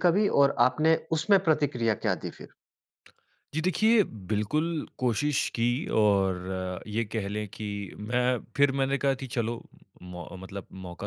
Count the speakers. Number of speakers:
2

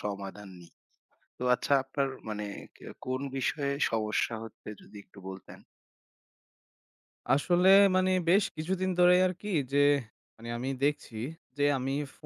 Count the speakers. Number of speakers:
2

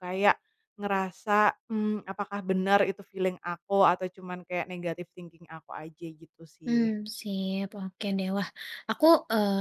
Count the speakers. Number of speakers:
2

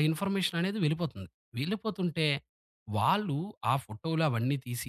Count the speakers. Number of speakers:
1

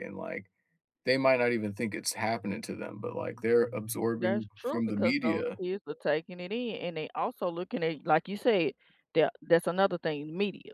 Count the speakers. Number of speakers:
2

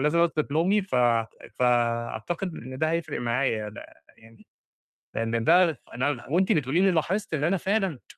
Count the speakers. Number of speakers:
1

